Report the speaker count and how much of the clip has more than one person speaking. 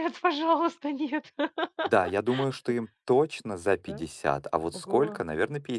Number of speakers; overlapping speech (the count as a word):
two, about 11%